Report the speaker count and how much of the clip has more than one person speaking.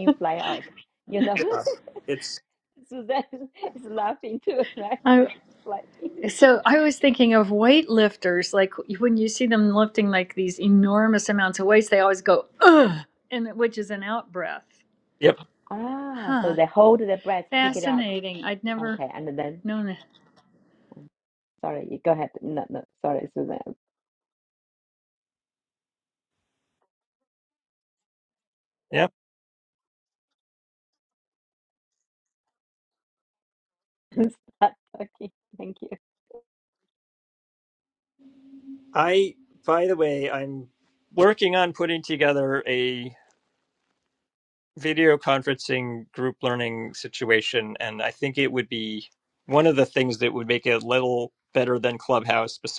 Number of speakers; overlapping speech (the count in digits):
3, about 3%